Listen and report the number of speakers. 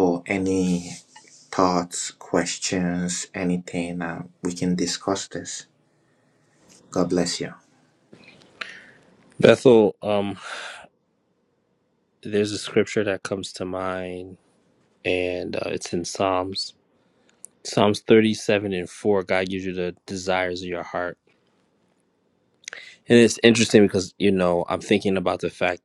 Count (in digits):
2